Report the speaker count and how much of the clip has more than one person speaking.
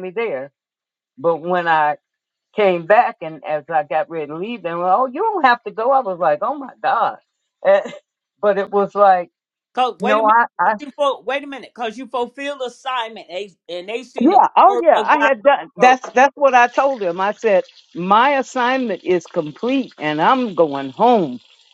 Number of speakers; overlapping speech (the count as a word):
two, about 8%